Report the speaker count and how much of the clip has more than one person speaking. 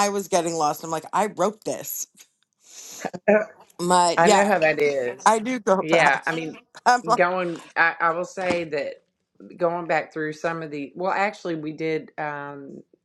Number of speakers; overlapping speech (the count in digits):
2, about 6%